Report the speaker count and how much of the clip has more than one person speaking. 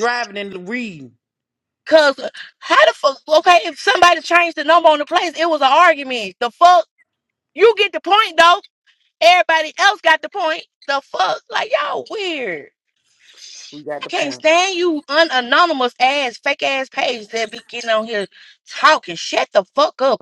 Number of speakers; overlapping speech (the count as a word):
two, about 2%